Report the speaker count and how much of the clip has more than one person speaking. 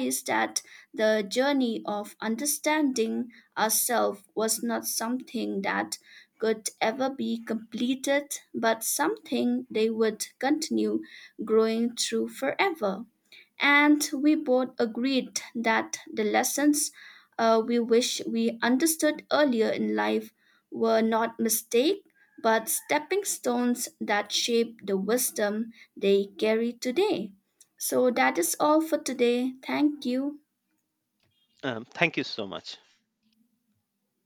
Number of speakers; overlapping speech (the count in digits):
2, no overlap